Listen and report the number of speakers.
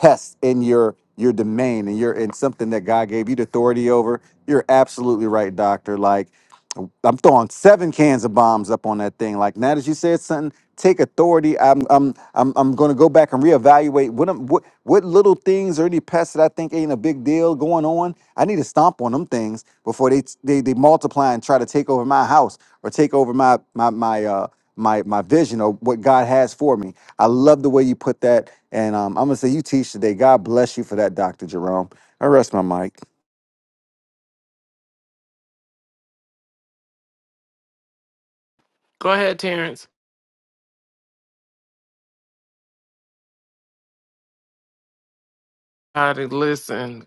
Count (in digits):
2